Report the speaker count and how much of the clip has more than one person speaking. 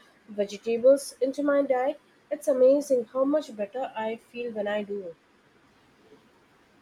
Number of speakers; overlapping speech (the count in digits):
1, no overlap